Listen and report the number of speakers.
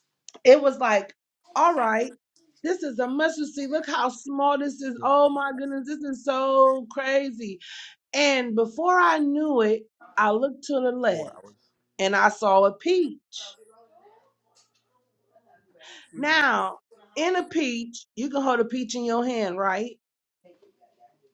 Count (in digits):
1